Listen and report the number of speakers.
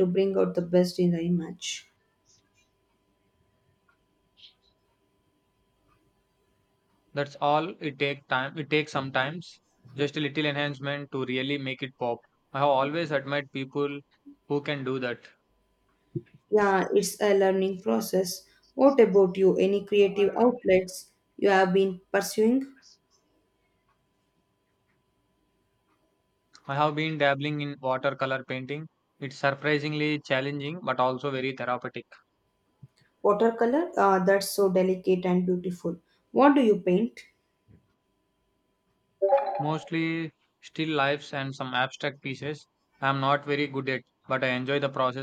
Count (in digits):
2